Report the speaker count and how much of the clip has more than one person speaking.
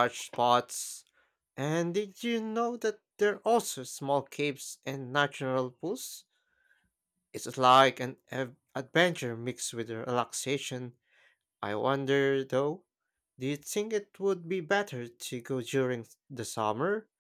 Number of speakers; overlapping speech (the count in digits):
1, no overlap